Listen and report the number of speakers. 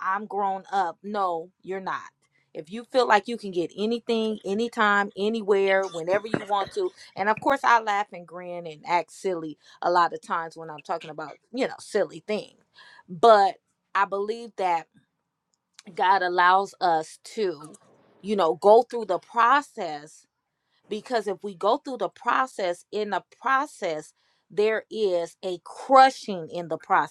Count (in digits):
1